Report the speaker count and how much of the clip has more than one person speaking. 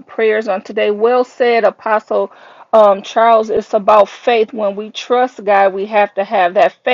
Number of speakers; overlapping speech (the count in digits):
1, no overlap